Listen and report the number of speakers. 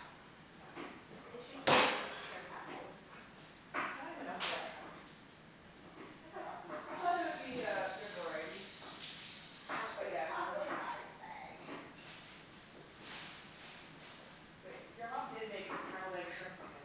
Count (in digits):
2